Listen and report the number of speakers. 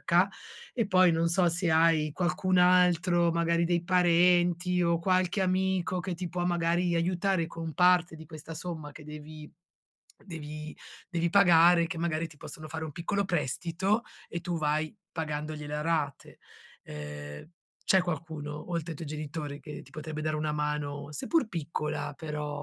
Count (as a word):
one